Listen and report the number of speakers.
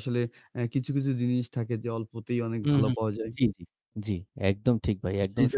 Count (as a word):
two